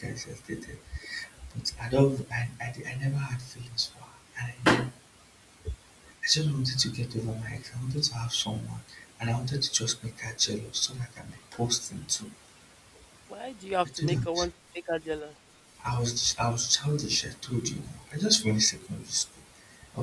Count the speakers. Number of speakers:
2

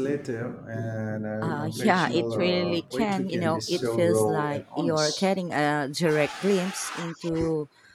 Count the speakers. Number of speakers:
2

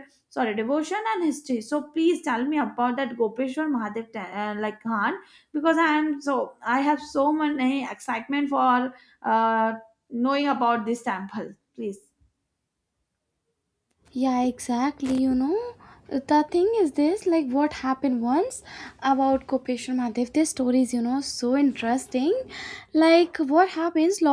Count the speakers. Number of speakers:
2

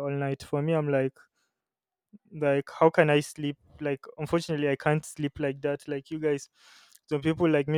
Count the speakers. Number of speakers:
1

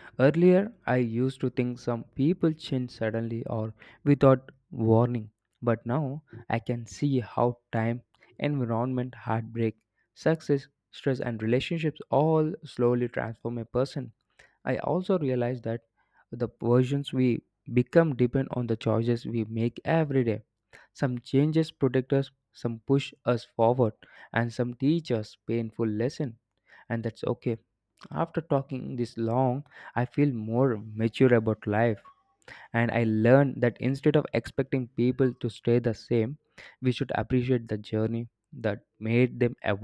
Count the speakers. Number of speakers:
1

